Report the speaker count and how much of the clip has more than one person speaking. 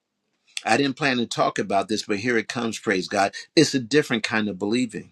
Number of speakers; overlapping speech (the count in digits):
1, no overlap